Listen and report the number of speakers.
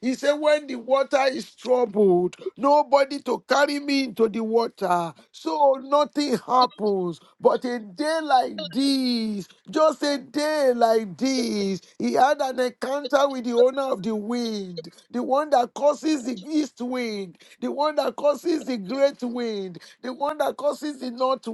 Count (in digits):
1